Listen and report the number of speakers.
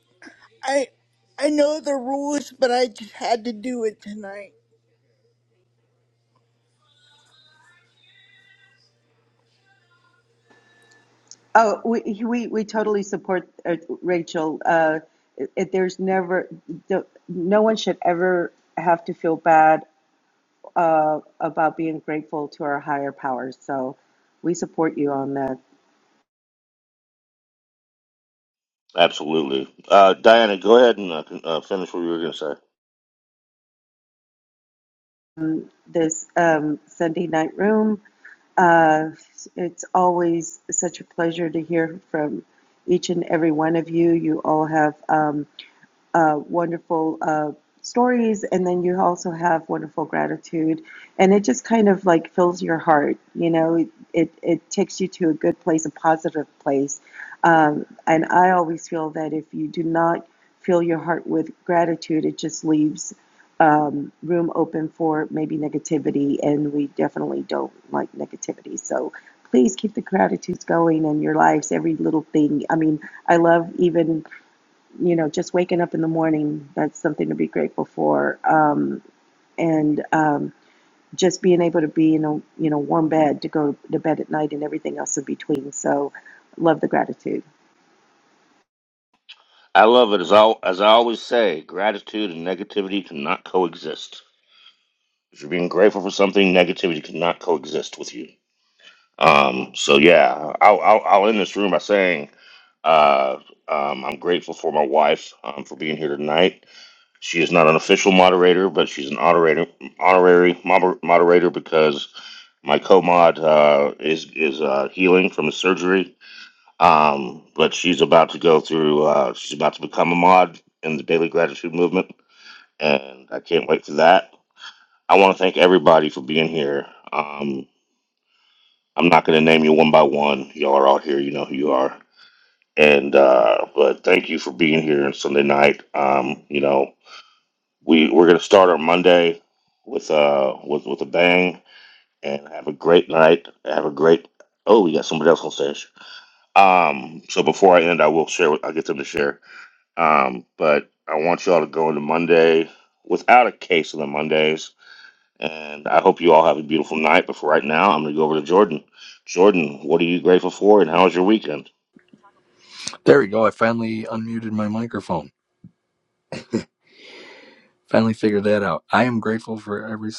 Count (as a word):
four